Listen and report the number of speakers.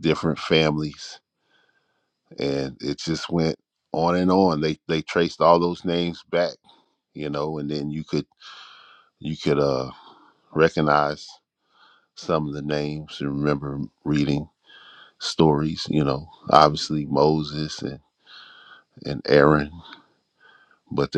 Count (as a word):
one